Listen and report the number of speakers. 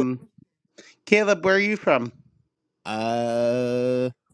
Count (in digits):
2